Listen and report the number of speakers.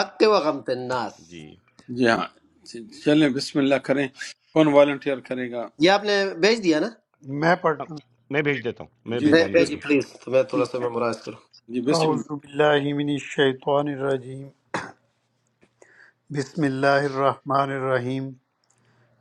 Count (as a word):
four